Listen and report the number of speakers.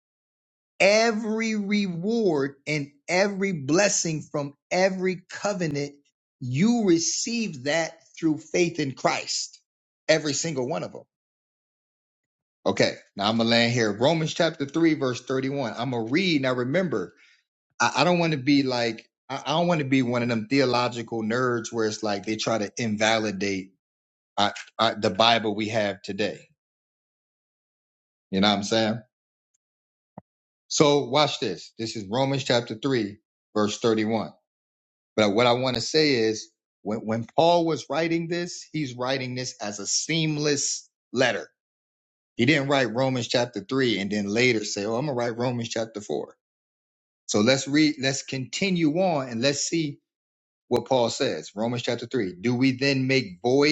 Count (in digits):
1